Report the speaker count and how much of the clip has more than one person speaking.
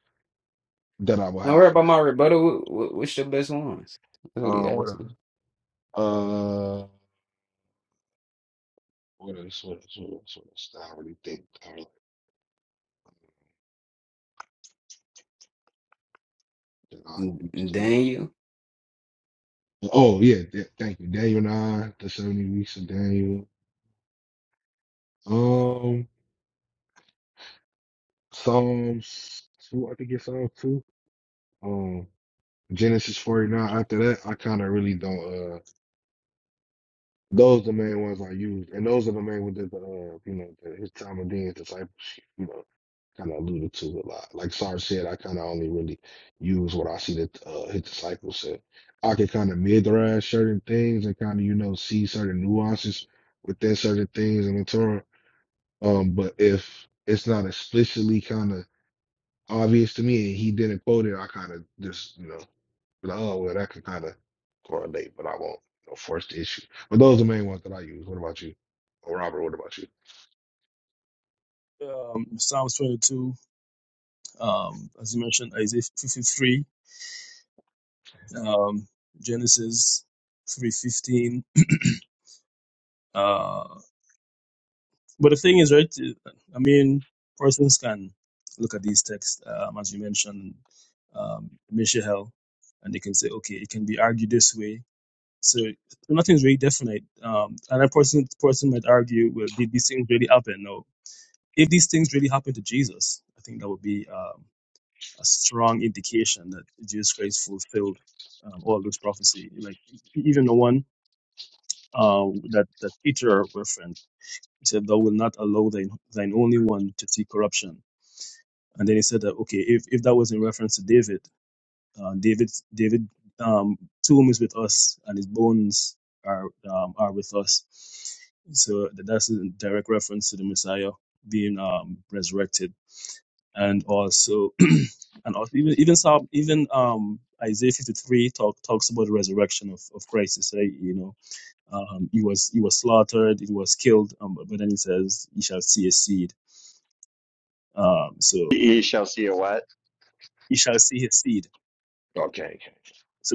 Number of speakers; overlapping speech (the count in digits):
4, about 1%